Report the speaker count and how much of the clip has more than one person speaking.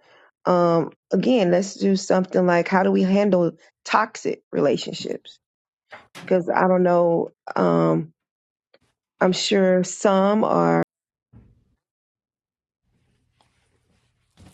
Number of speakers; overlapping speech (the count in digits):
1, no overlap